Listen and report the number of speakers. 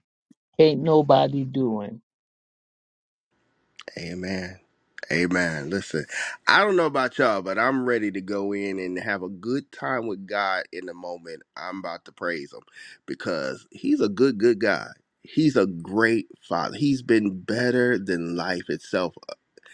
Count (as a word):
two